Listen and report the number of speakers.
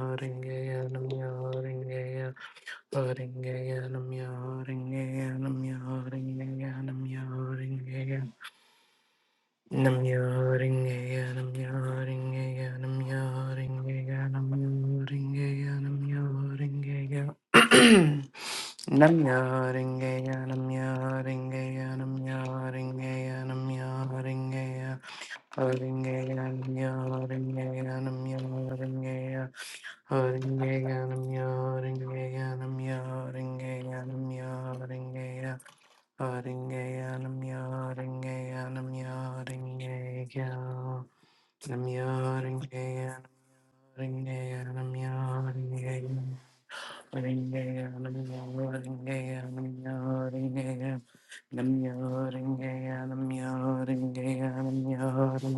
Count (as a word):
one